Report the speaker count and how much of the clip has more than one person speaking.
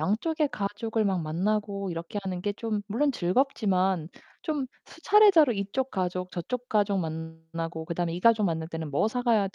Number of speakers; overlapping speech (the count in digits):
1, no overlap